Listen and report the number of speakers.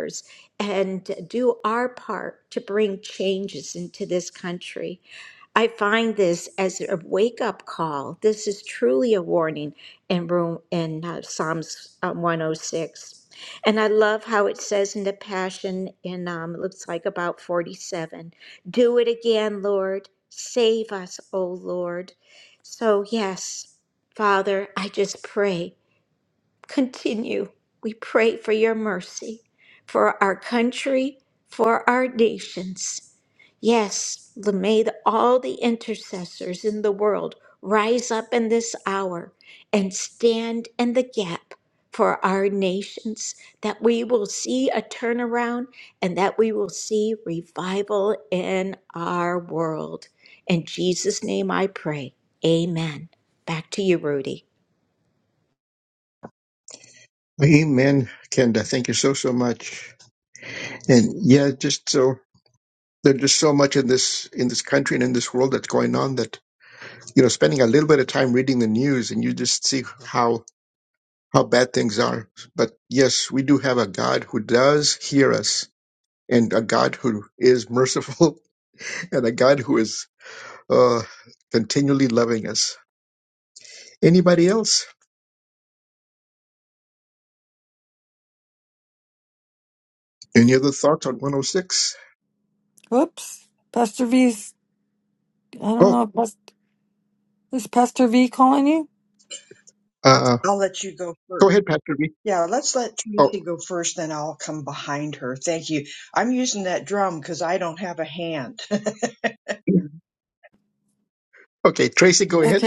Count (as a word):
four